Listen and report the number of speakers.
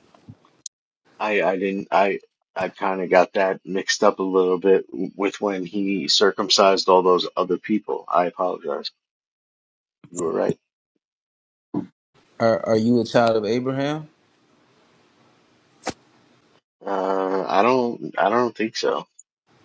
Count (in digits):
2